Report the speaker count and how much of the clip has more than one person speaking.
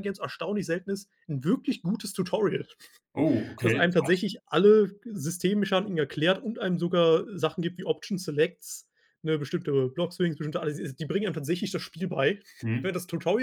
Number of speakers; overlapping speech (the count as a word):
two, about 4%